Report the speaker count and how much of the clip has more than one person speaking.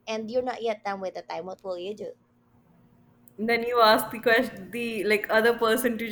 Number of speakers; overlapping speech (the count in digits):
2, no overlap